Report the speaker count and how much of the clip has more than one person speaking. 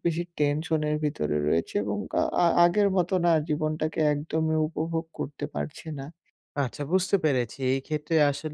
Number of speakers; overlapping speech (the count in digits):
2, no overlap